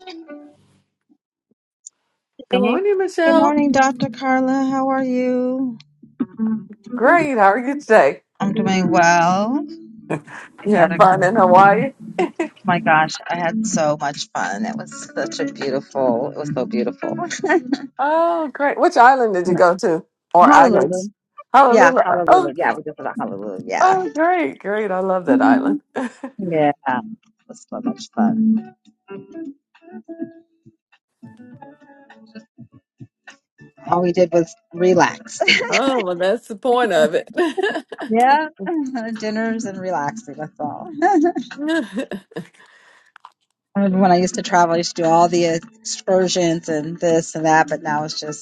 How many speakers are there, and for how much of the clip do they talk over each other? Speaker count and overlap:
2, about 8%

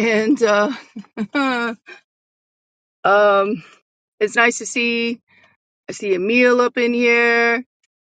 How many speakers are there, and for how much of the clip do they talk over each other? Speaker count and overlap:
1, no overlap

